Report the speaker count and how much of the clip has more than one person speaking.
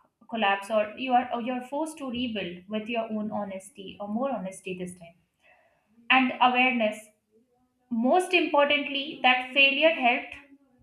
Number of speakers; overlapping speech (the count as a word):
one, no overlap